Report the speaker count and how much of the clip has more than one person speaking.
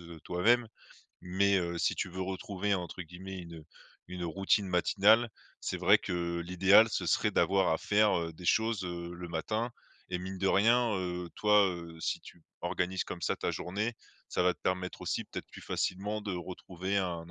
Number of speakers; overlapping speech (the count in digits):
1, no overlap